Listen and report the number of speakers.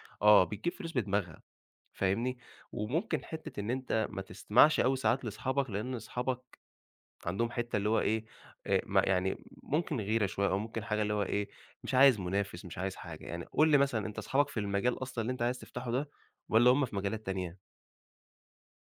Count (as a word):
one